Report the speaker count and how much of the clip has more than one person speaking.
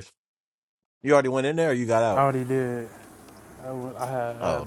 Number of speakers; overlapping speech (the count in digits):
2, about 8%